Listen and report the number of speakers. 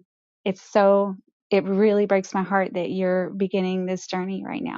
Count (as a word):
one